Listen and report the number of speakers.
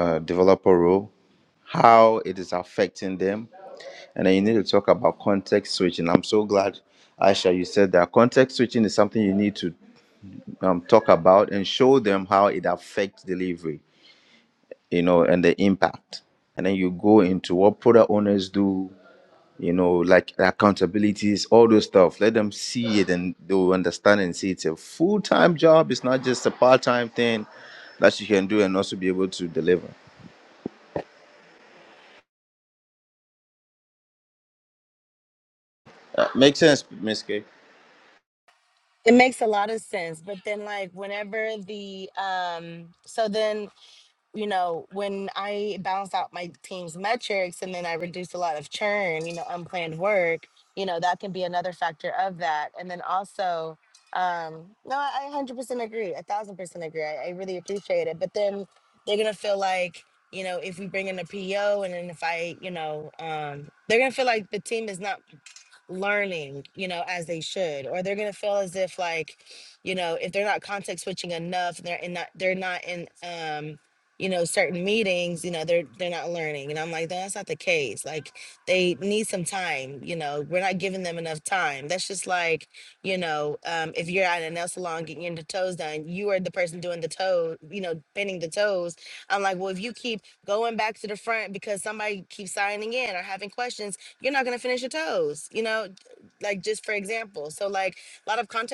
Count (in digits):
2